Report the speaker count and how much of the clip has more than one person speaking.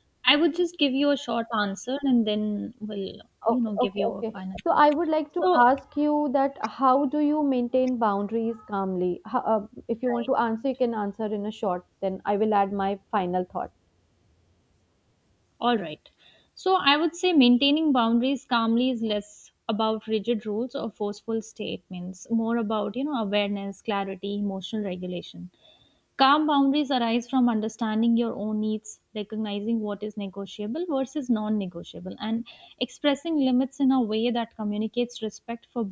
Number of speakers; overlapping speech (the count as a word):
two, about 6%